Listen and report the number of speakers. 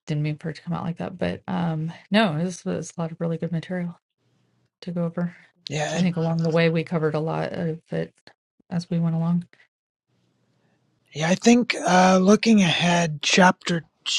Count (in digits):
2